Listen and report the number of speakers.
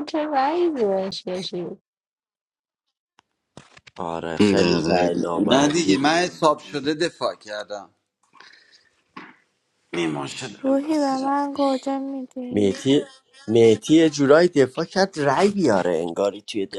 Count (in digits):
4